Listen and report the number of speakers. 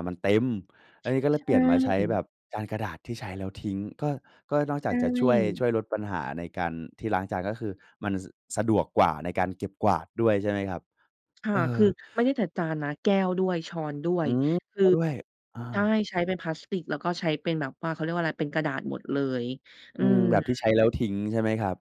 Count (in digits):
2